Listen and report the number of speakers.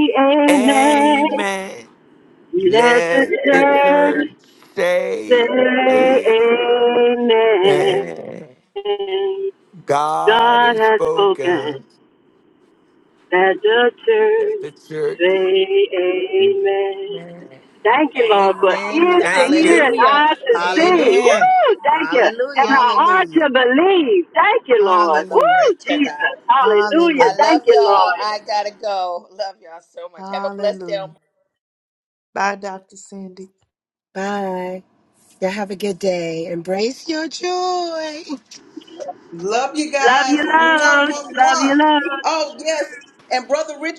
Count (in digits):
6